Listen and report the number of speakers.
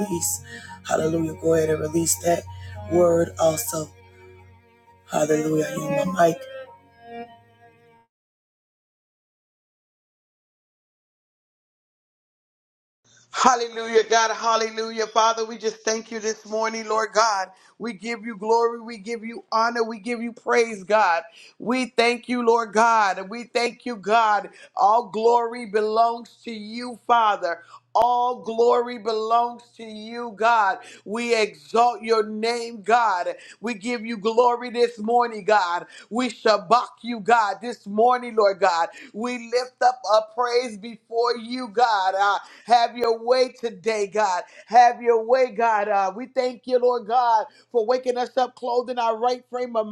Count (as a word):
two